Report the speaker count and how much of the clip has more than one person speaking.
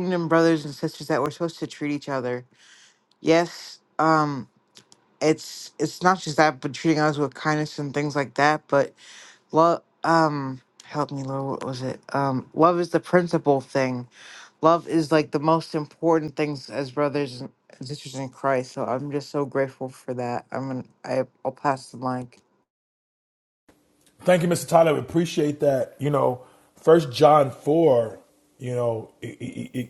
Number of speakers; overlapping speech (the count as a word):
two, no overlap